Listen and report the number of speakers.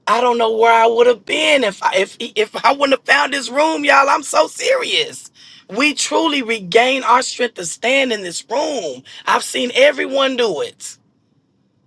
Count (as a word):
one